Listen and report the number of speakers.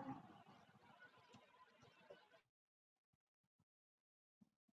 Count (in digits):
0